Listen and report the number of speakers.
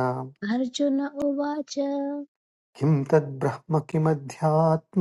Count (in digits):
2